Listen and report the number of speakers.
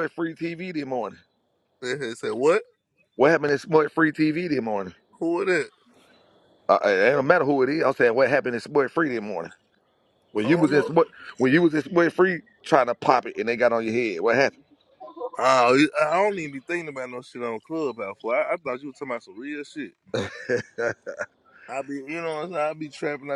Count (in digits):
2